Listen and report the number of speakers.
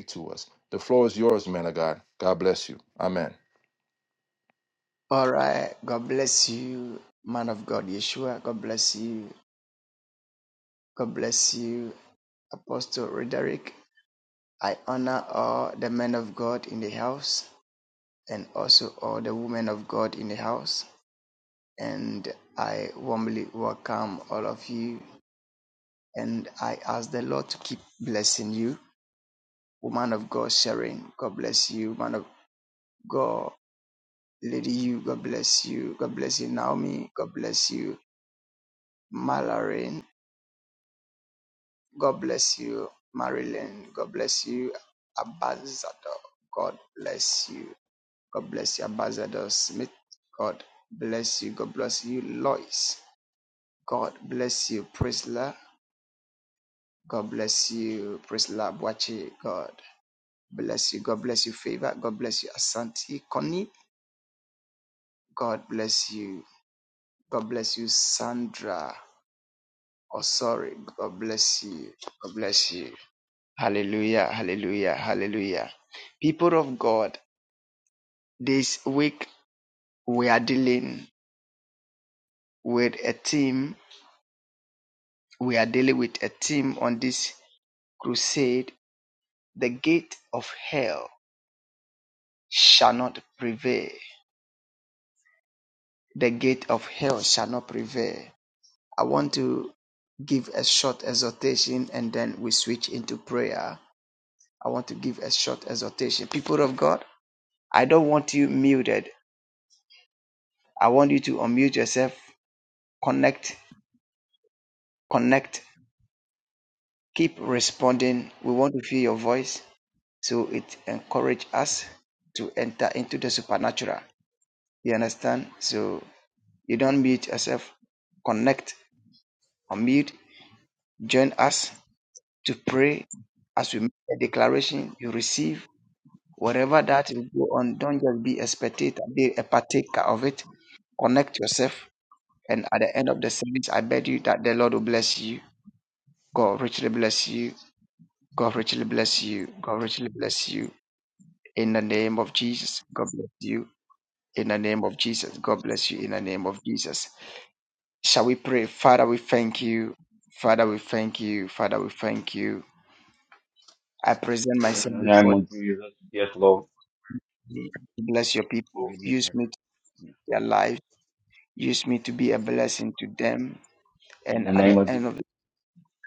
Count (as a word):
three